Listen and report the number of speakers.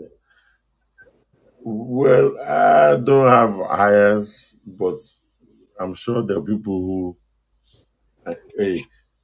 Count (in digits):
1